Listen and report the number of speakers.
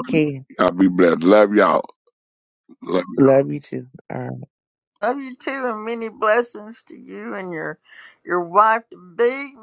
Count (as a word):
three